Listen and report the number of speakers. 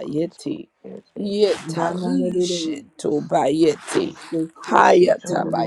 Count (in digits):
3